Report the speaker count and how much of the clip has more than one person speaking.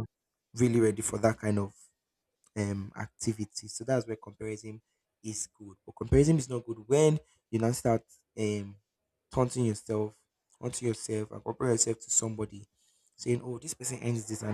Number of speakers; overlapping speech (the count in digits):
1, no overlap